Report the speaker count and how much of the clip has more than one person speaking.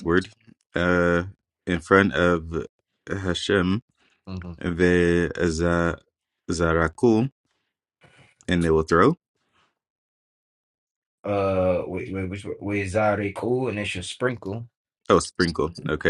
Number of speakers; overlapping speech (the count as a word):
two, no overlap